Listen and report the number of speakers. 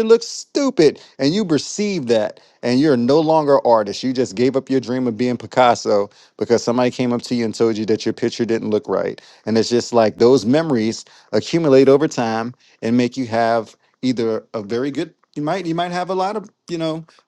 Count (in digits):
1